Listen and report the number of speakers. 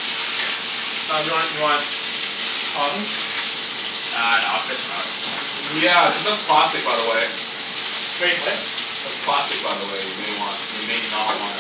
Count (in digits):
3